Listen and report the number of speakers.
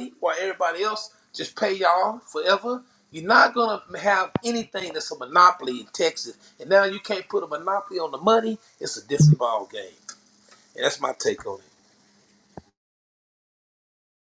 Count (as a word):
one